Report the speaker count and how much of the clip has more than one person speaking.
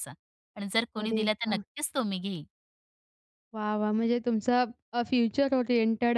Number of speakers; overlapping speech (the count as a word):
two, about 11%